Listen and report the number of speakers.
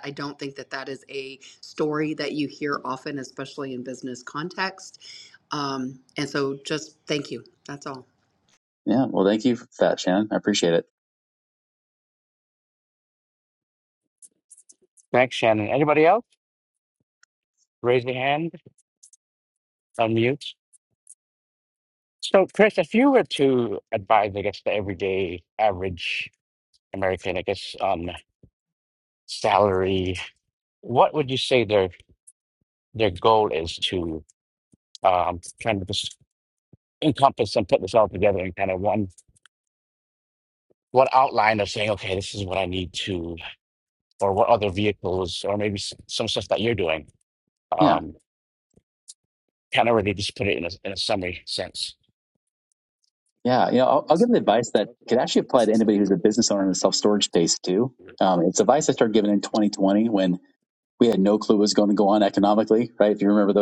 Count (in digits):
3